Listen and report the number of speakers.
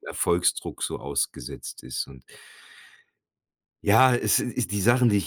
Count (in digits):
1